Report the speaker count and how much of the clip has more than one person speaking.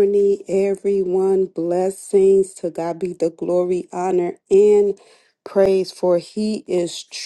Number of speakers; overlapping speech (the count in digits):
1, no overlap